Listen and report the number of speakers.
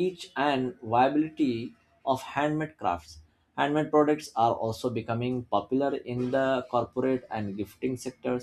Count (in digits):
1